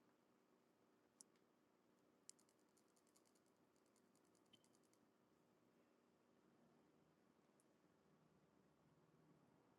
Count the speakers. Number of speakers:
0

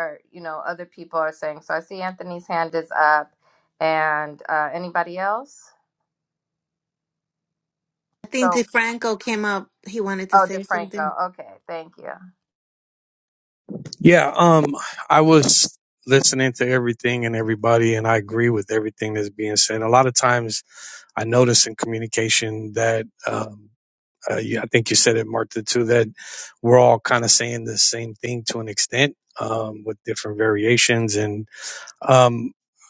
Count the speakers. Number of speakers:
3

